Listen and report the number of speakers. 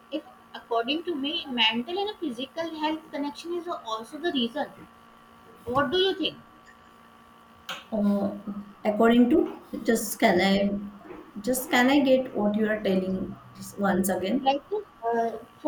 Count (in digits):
2